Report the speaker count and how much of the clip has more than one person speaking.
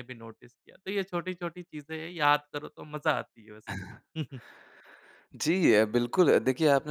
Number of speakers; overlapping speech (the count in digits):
2, no overlap